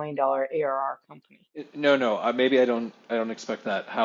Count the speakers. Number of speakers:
2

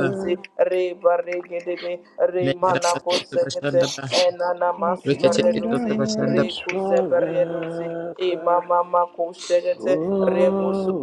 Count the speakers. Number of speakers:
3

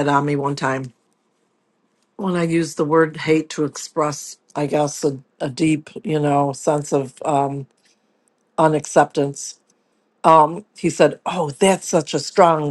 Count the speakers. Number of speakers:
1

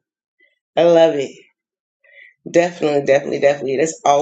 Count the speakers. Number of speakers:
1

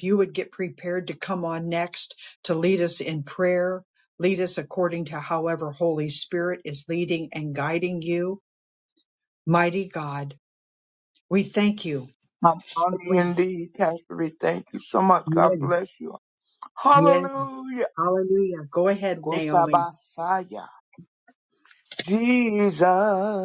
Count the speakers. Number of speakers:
2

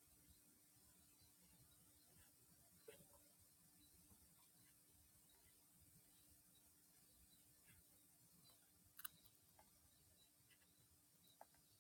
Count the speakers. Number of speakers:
0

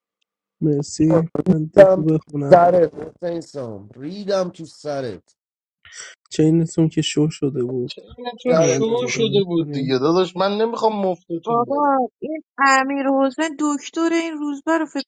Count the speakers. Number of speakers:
4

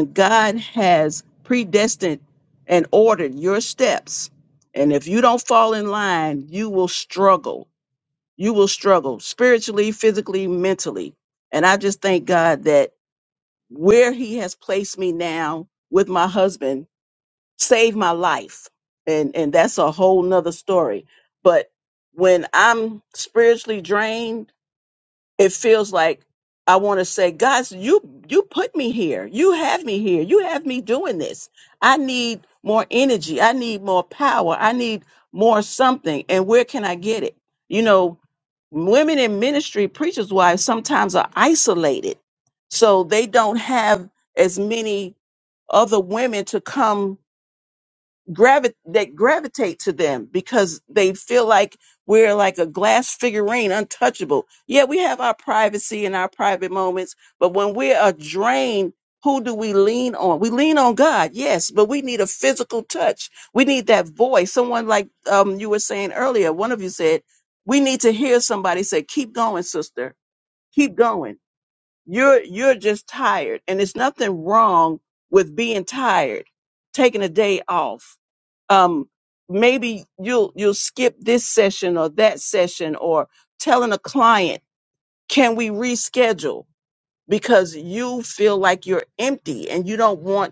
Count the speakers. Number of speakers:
1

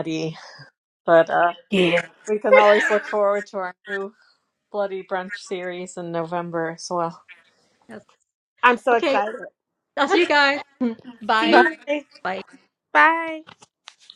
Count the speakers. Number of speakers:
3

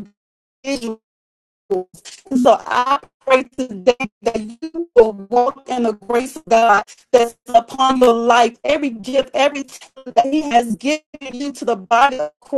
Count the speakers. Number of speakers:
1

